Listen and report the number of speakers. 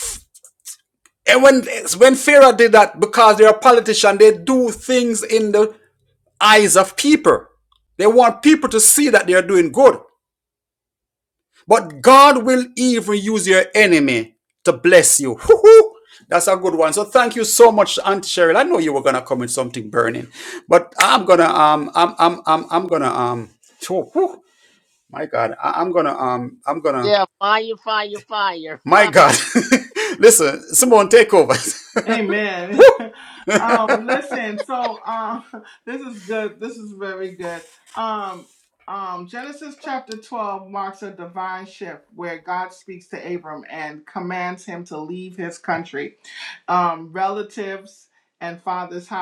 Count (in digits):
3